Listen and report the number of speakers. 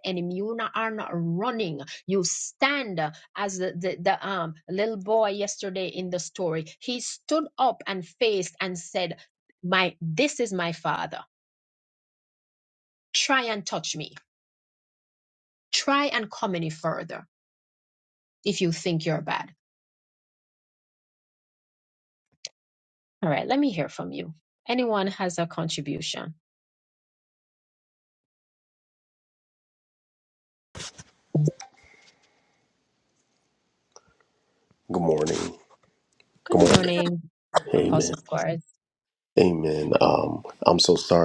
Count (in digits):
2